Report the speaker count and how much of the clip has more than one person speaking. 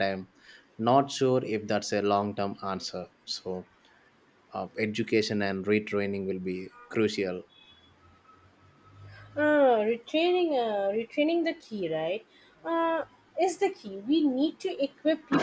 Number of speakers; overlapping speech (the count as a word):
two, no overlap